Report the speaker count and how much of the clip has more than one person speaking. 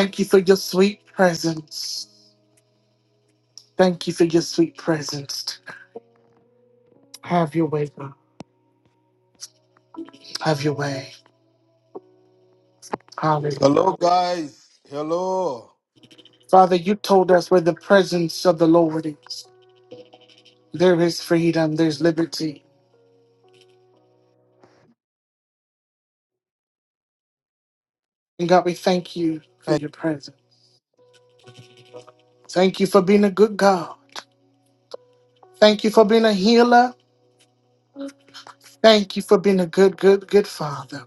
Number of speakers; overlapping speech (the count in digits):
2, under 1%